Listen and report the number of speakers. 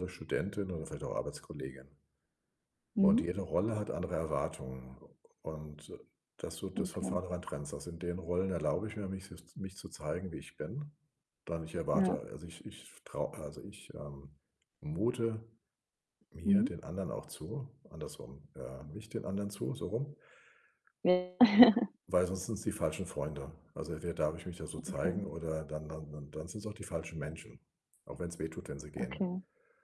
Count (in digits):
2